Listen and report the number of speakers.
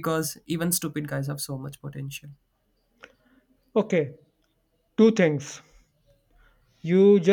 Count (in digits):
2